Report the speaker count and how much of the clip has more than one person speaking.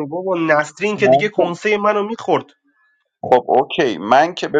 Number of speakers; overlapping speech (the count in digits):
2, about 10%